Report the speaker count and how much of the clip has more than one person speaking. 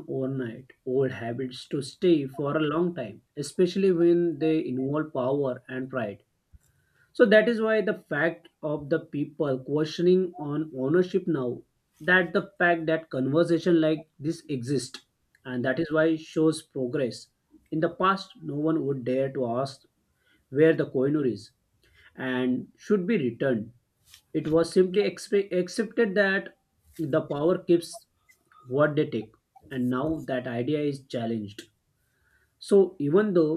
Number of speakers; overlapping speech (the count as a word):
one, no overlap